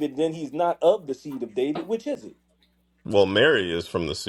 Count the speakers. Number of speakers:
2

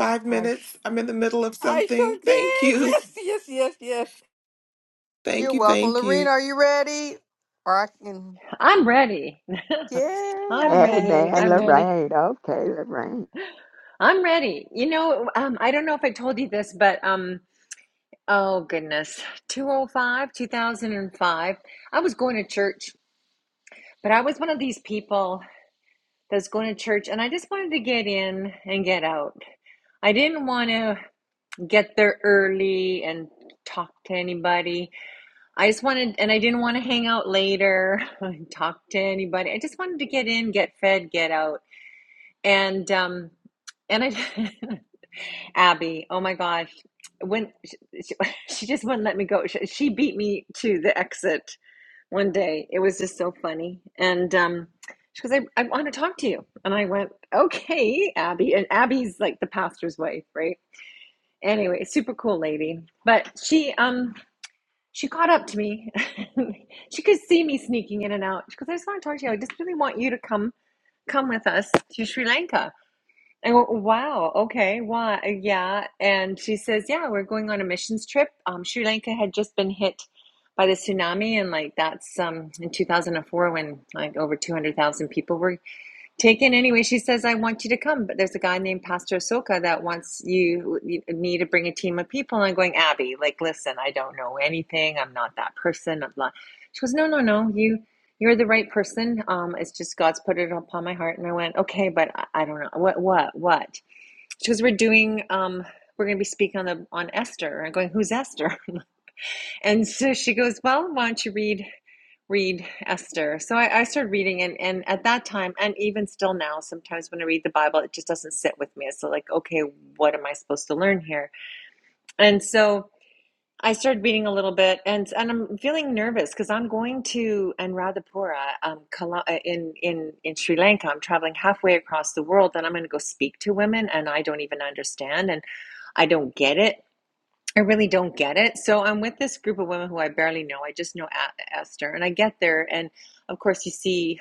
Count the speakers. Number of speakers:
4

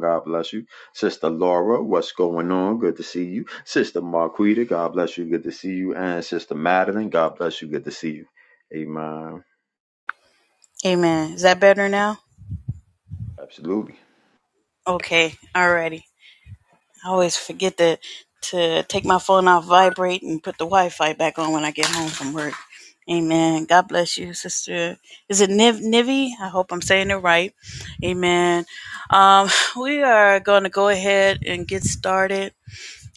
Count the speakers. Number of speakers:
2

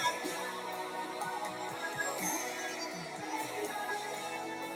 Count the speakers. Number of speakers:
0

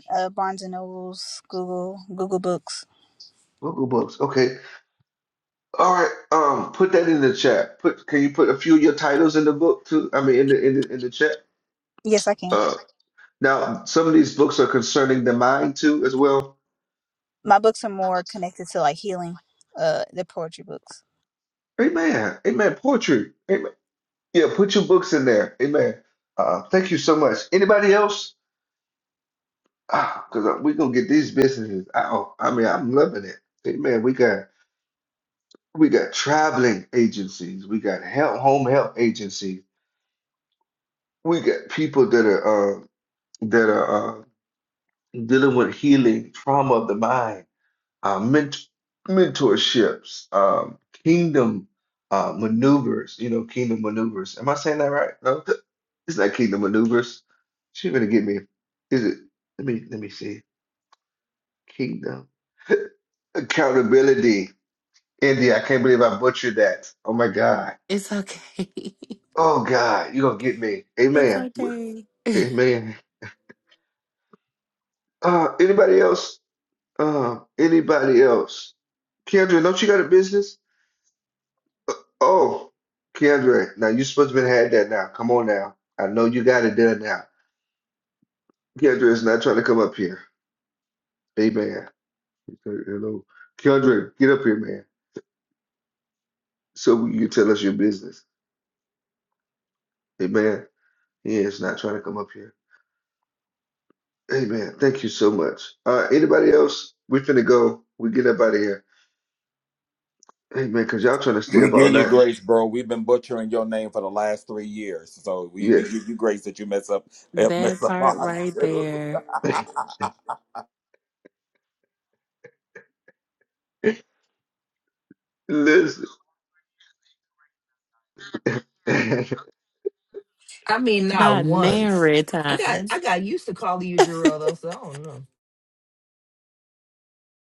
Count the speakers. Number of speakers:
5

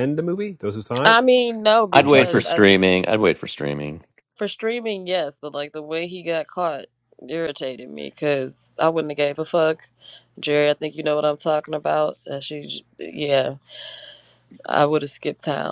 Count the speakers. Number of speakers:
3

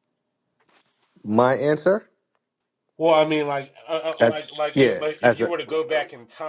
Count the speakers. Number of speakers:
2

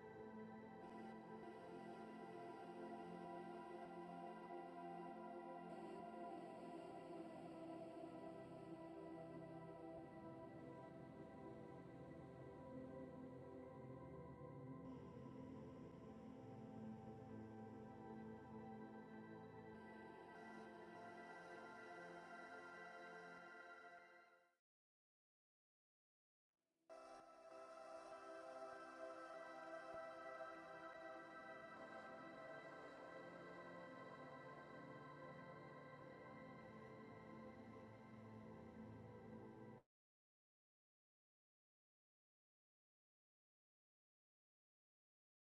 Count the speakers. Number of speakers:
0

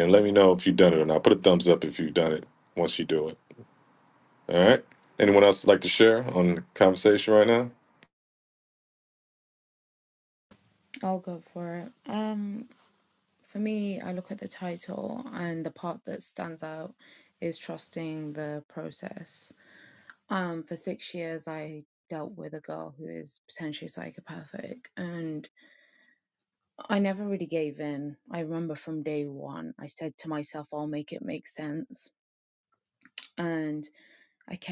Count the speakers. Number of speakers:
2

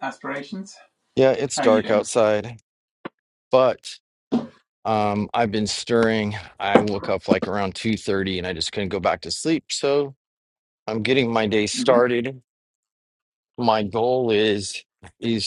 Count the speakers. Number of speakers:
2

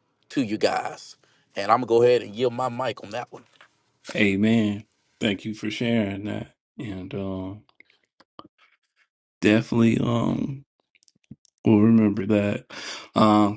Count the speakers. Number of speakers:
2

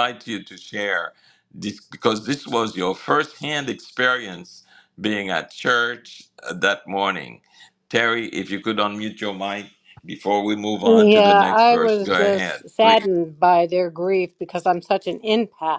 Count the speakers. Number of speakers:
2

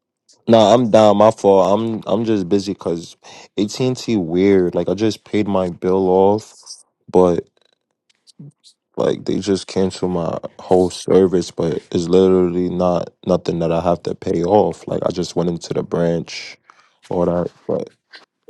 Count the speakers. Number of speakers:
1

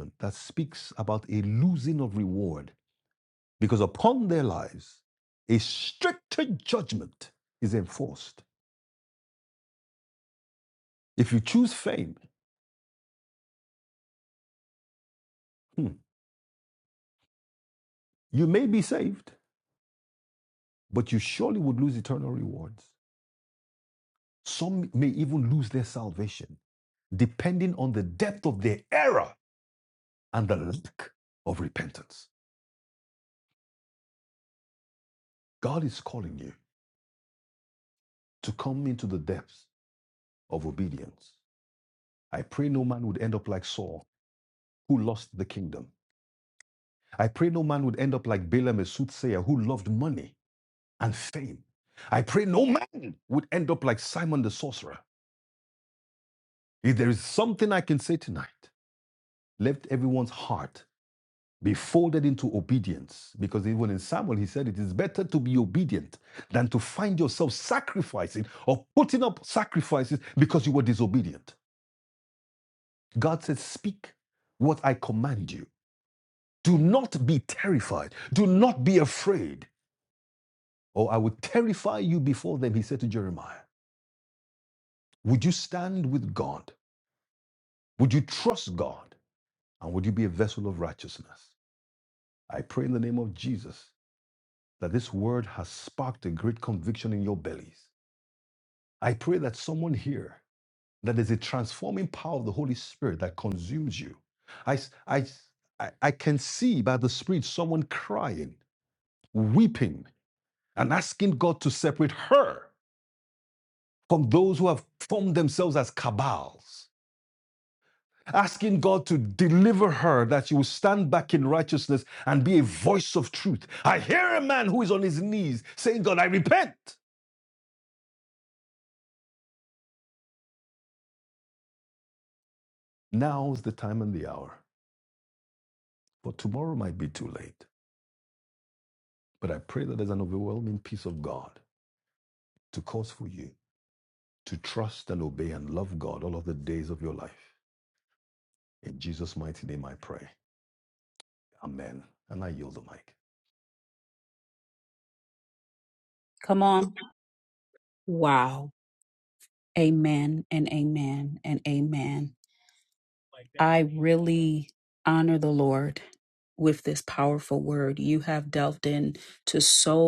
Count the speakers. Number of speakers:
2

